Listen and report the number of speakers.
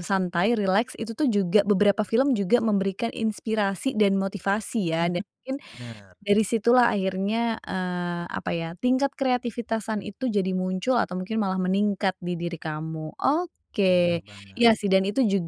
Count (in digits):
2